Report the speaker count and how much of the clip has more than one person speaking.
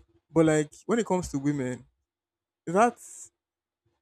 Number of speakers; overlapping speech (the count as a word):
one, no overlap